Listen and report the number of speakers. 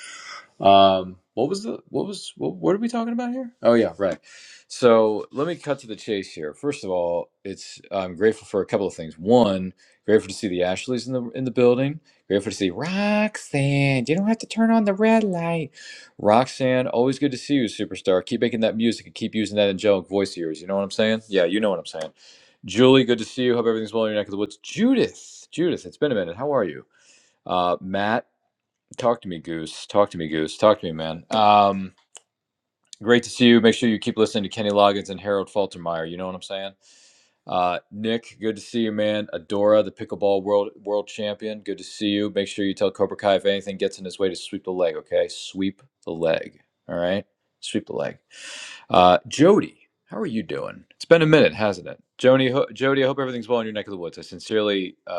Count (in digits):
1